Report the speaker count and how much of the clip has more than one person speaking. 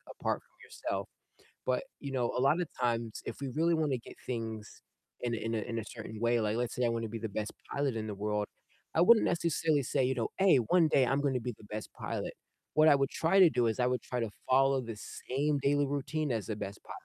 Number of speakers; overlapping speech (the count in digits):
1, no overlap